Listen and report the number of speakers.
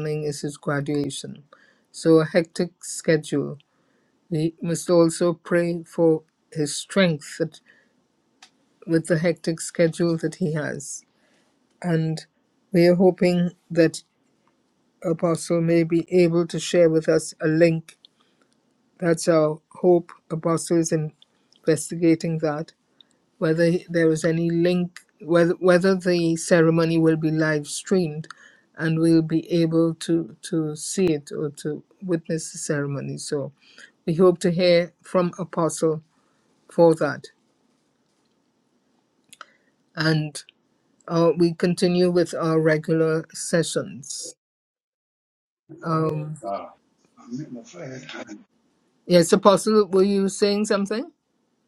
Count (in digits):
2